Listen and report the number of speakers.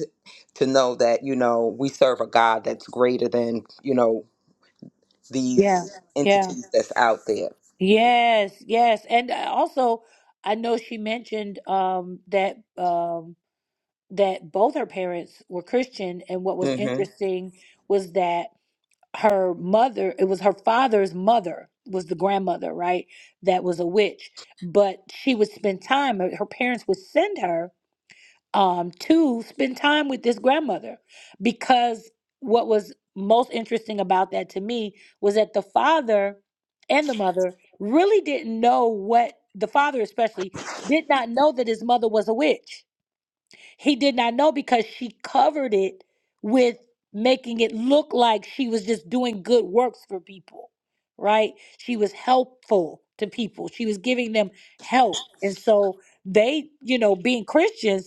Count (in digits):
2